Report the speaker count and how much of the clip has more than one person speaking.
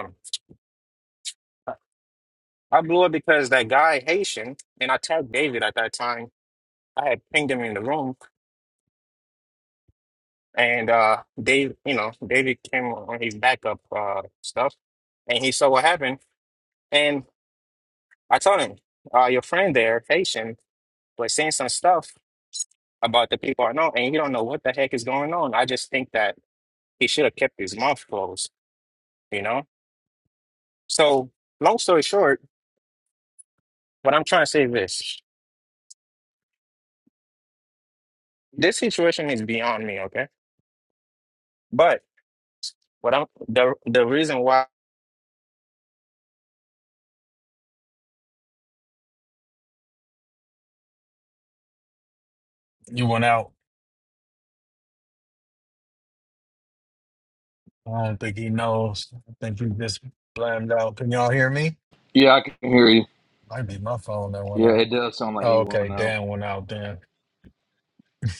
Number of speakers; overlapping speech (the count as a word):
three, about 1%